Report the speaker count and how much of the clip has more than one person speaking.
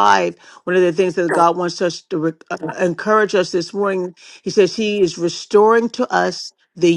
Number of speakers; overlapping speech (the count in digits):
1, no overlap